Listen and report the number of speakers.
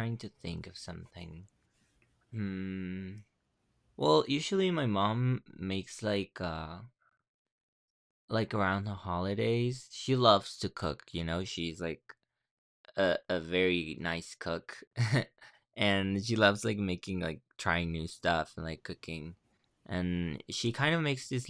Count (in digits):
1